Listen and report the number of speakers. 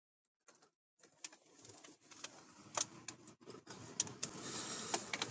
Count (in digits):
0